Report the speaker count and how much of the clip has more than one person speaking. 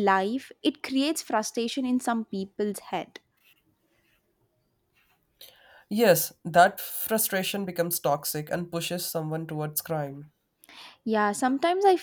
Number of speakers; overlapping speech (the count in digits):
2, no overlap